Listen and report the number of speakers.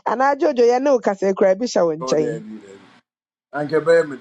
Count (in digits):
2